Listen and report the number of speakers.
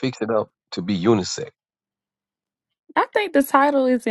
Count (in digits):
2